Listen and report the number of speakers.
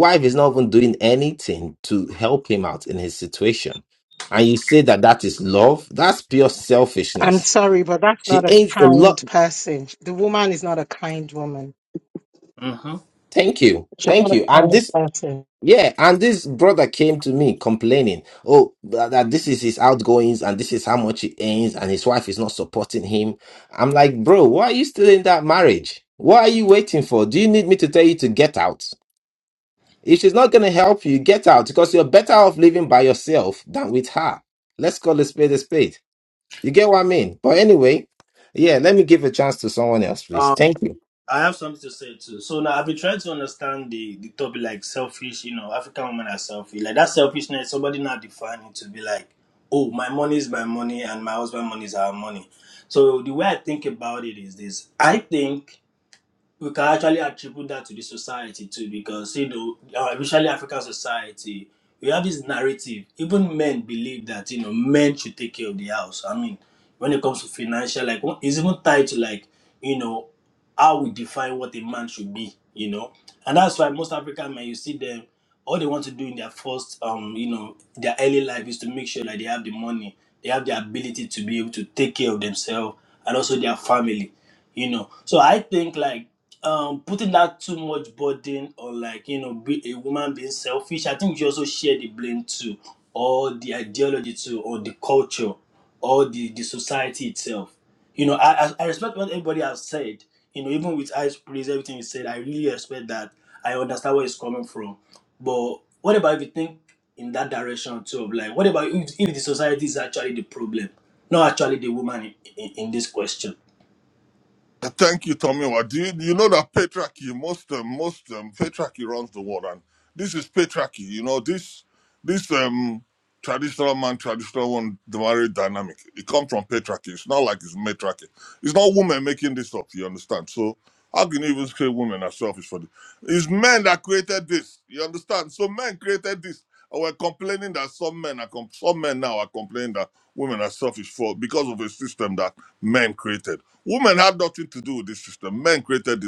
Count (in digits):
4